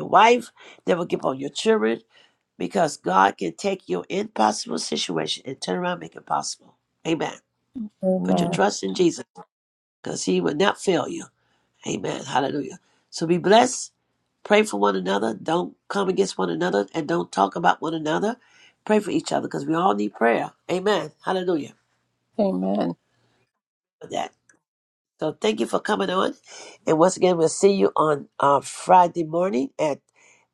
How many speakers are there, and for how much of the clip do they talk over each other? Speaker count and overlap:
2, about 1%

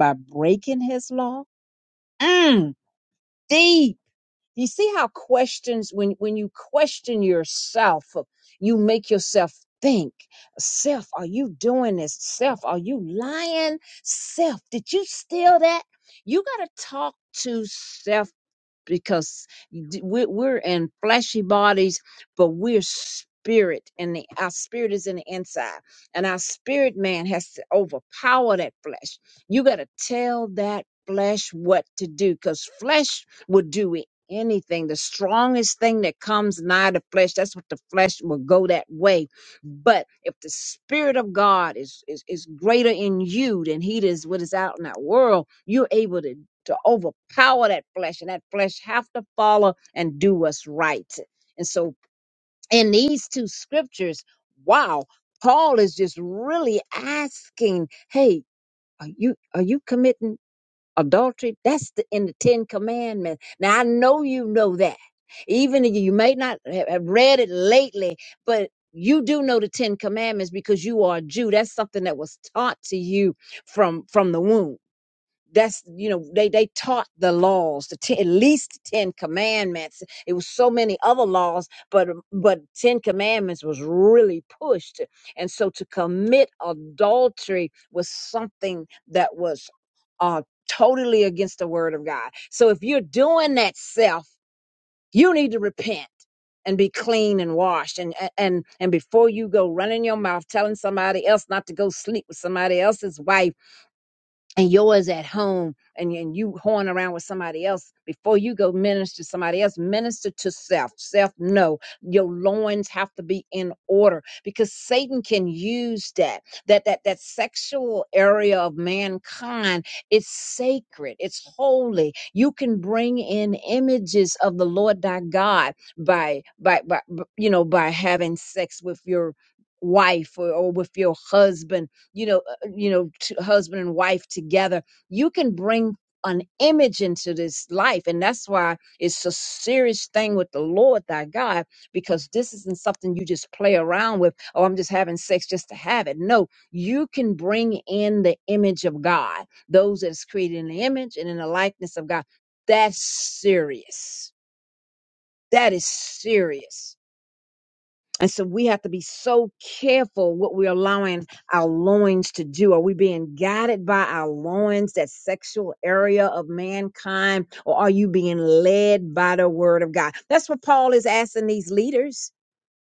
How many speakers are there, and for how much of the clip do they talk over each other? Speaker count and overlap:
1, no overlap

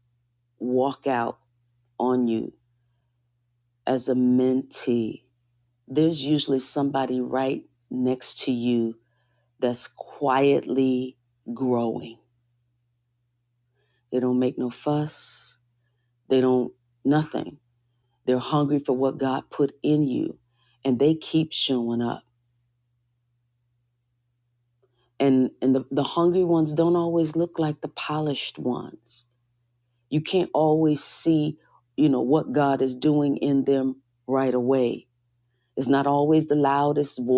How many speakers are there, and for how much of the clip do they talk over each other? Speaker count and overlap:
1, no overlap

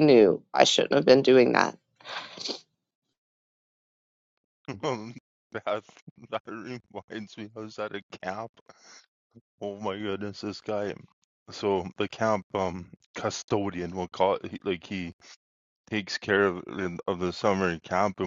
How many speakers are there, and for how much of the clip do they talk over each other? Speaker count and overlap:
2, no overlap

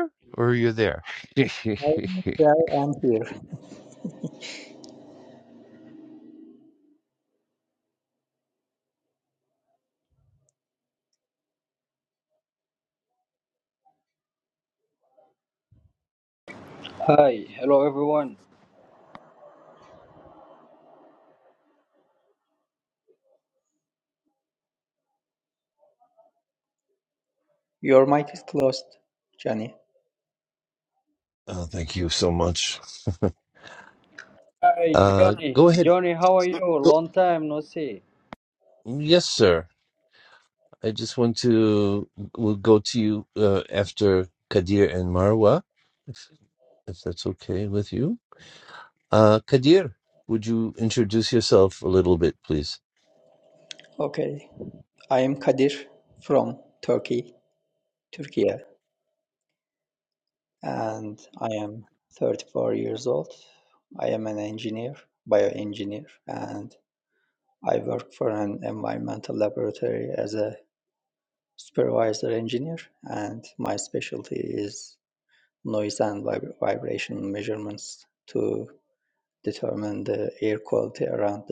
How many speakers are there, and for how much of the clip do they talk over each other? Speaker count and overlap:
3, about 1%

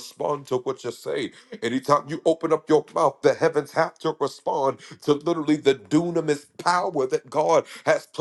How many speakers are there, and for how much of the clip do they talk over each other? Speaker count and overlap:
1, no overlap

